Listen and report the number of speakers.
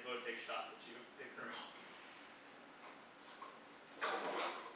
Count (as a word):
one